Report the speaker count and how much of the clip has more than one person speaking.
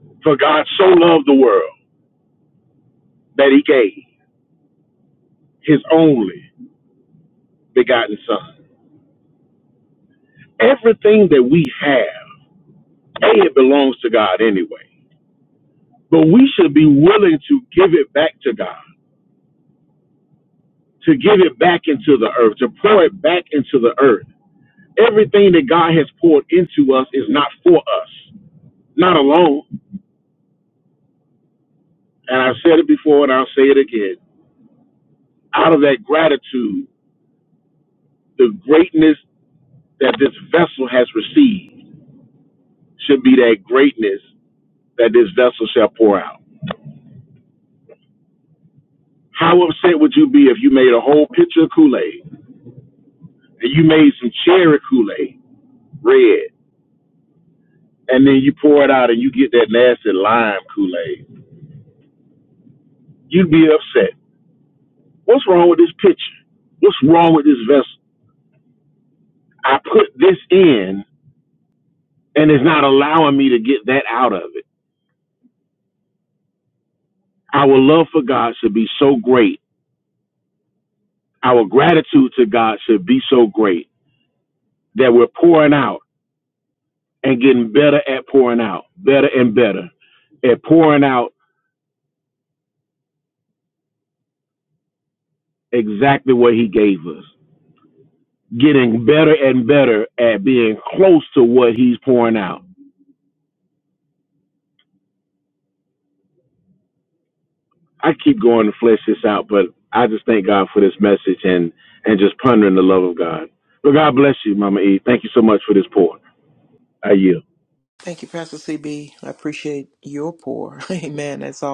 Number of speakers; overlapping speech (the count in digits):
2, no overlap